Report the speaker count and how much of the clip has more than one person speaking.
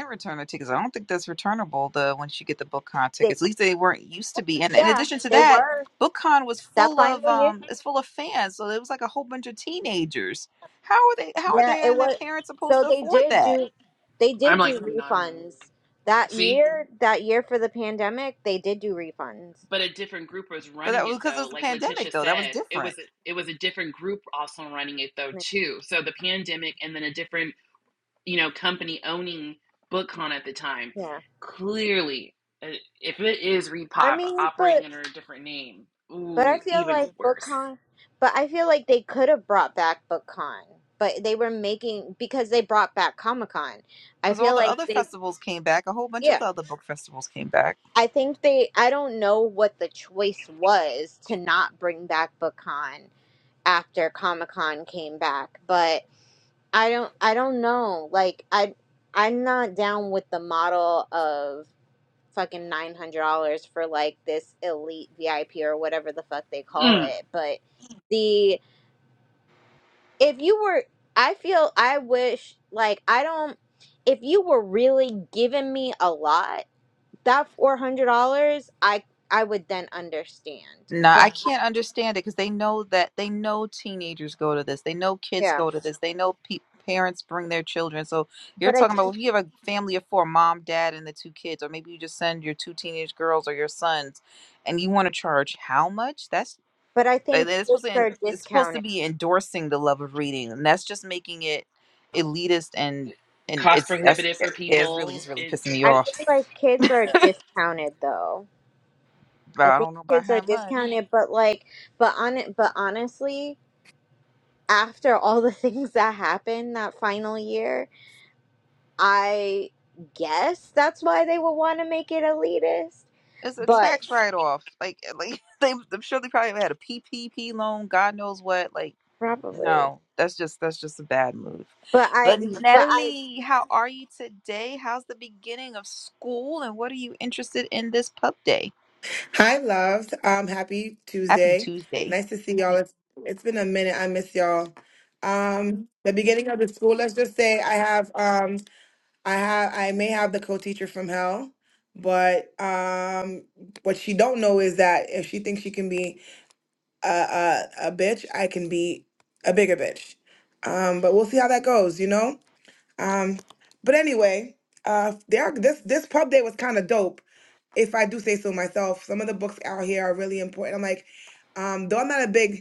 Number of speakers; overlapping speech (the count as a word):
four, about 10%